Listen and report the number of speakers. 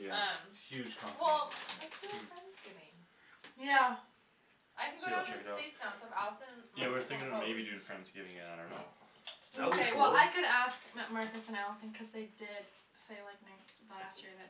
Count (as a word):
four